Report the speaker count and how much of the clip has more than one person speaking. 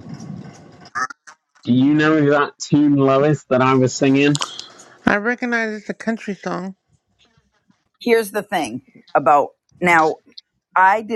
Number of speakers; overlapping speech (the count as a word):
three, no overlap